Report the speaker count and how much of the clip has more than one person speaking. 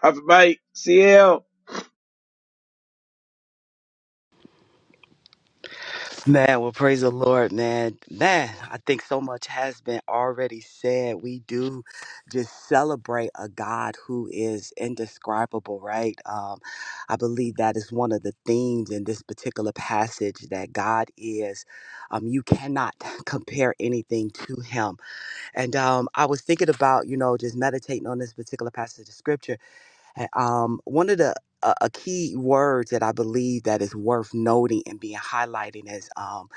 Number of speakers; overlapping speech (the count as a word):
two, no overlap